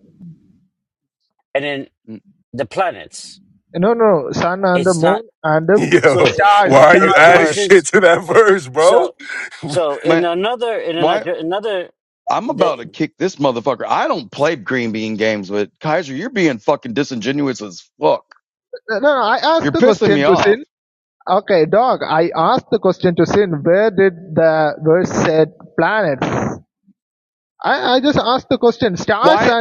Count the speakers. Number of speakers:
4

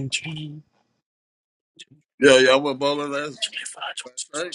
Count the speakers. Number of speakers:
2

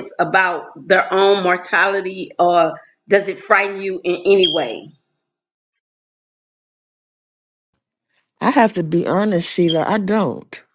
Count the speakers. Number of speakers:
2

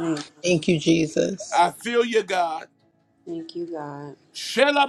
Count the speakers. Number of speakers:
3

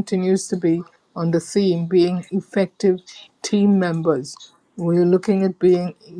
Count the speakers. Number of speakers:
1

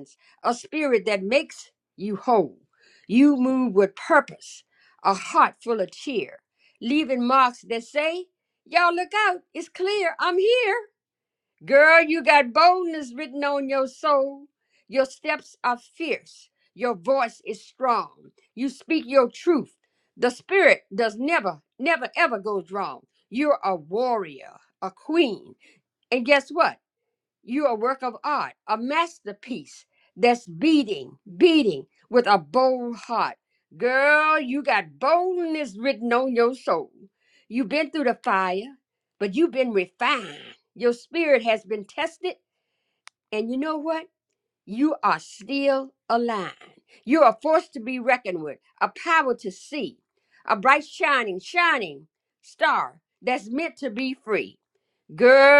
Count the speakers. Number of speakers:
1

